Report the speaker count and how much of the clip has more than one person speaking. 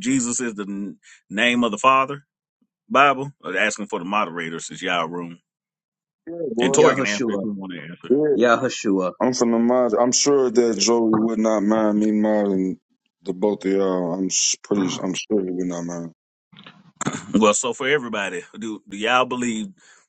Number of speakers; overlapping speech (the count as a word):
three, about 5%